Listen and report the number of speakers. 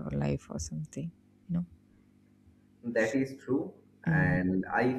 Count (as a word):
two